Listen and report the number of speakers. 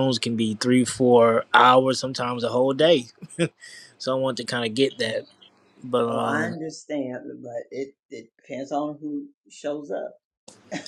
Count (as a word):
two